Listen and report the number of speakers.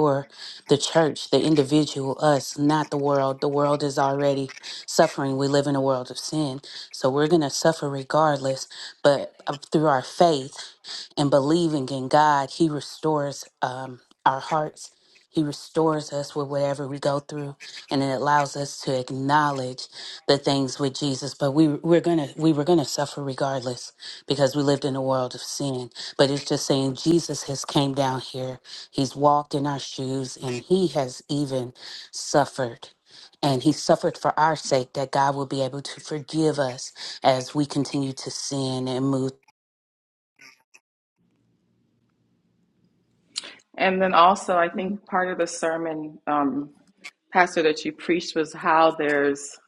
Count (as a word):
two